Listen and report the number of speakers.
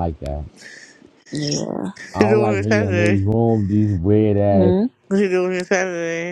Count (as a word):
three